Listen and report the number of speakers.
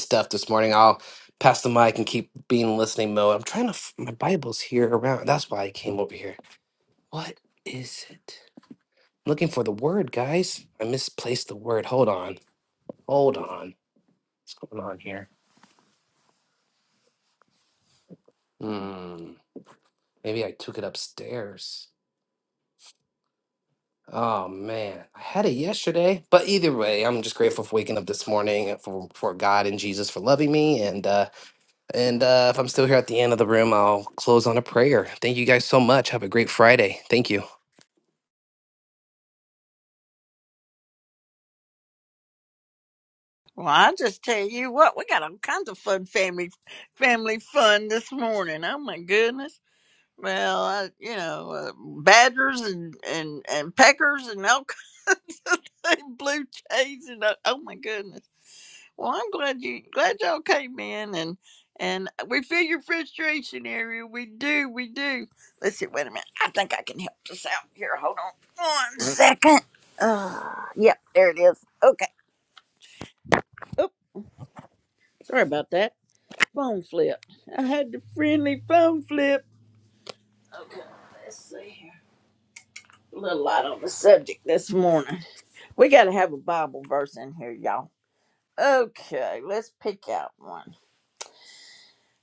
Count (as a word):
two